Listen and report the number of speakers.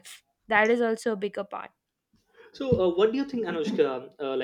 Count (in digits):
2